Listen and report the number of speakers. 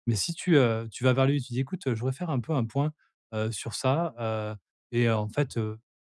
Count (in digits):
1